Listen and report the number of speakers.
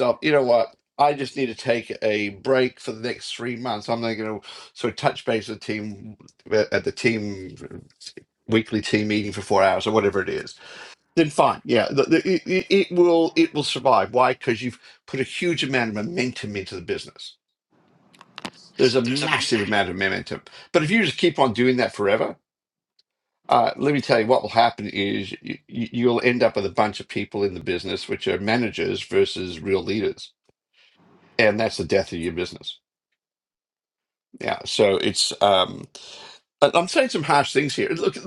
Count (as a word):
one